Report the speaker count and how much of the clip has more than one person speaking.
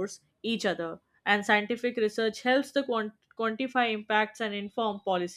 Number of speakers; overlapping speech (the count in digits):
1, no overlap